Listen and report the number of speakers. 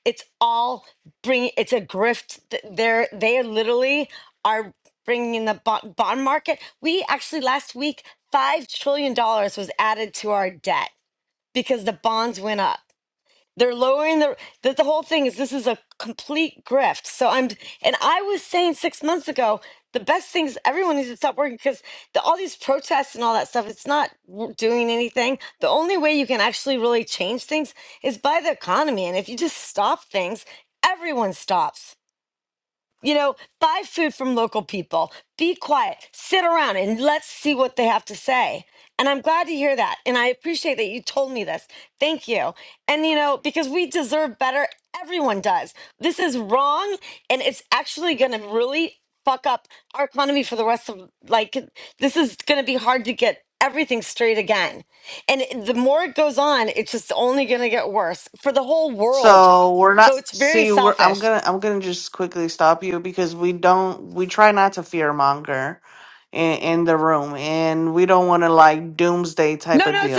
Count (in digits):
2